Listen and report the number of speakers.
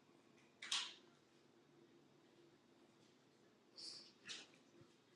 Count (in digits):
0